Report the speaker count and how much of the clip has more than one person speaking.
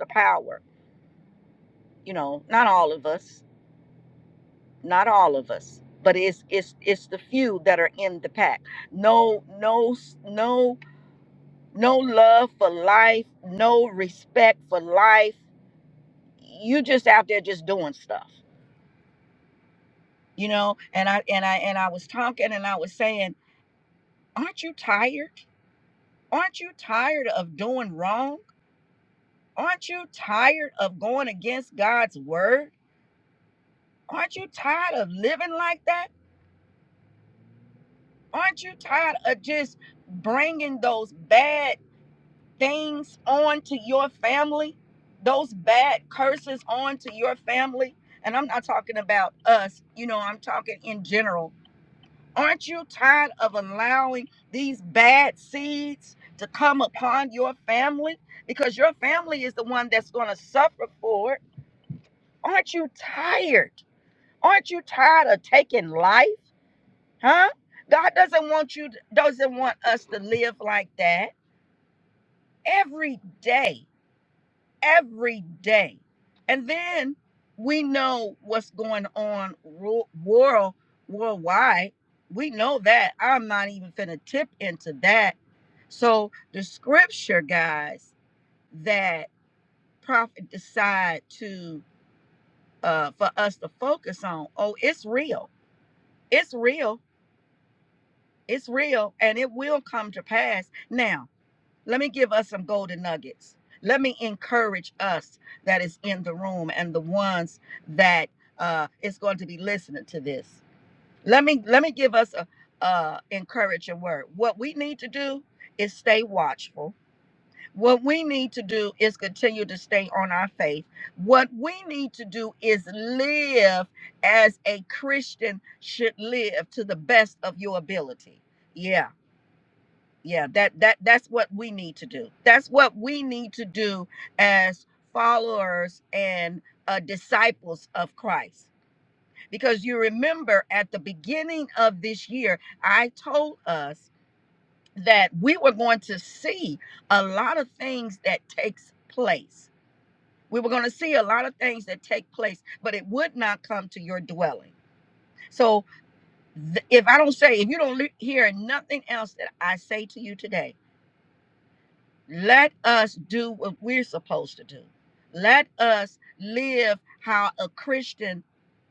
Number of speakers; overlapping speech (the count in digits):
1, no overlap